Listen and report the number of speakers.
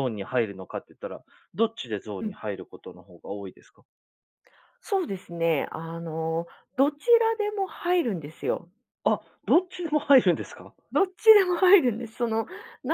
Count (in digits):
2